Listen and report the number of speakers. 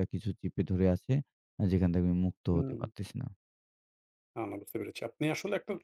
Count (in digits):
2